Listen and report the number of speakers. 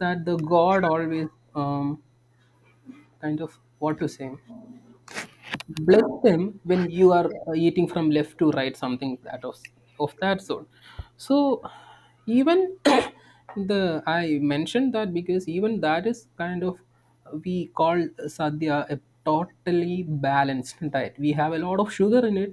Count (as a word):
one